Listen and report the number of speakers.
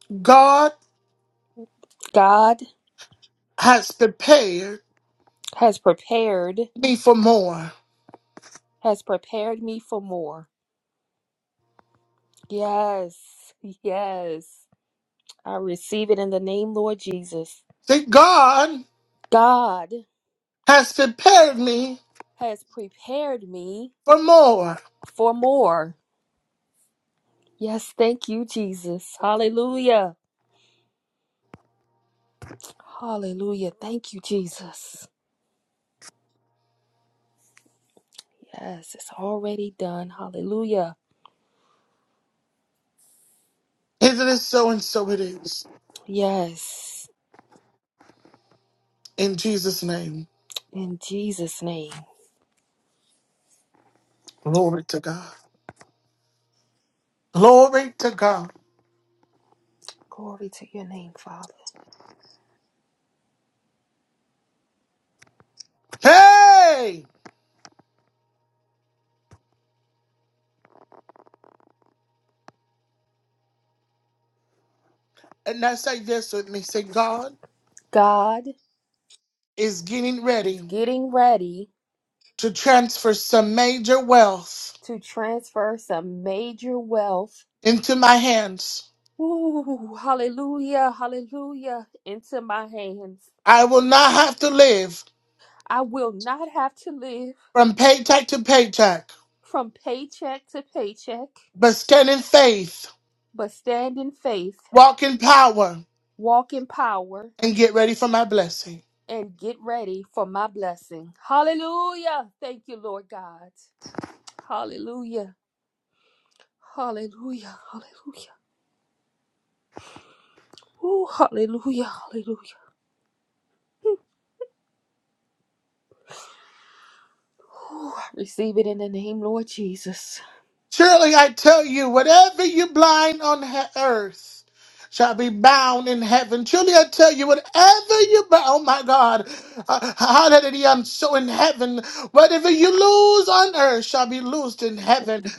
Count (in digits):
2